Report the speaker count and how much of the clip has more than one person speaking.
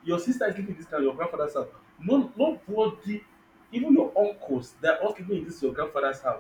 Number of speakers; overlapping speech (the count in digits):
1, no overlap